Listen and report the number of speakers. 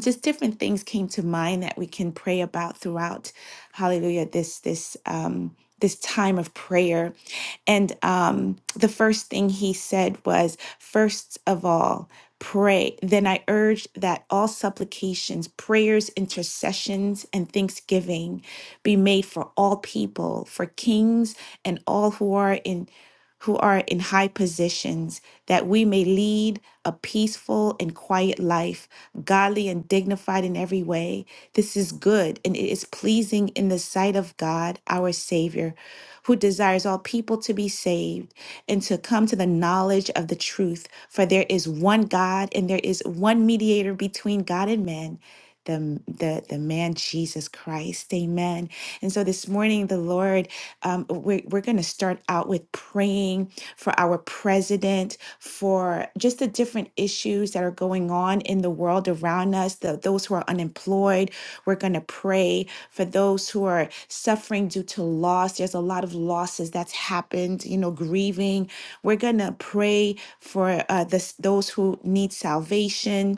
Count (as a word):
one